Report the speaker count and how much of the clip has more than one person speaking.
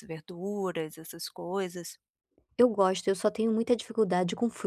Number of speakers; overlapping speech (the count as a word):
two, no overlap